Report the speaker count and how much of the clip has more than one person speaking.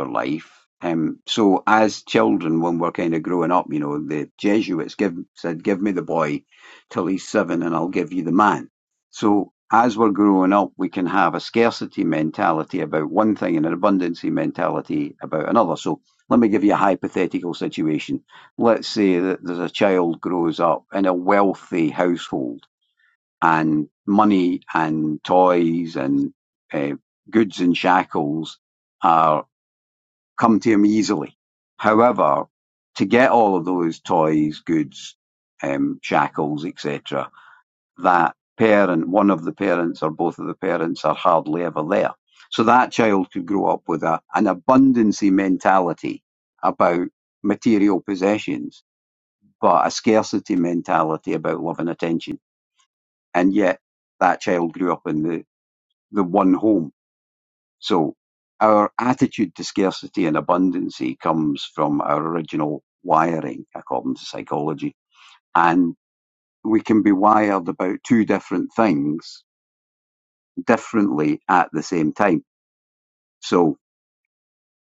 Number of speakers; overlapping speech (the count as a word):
one, no overlap